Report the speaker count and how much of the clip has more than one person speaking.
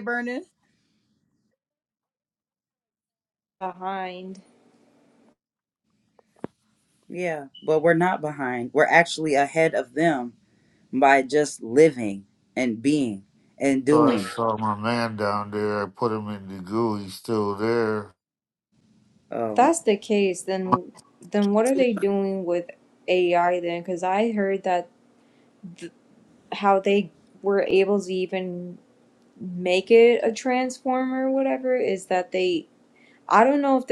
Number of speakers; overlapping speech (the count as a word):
three, about 2%